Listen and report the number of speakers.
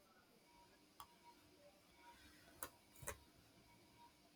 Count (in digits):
0